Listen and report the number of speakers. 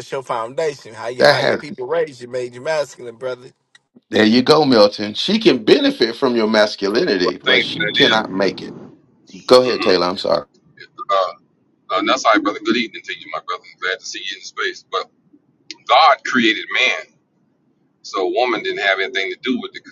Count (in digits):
3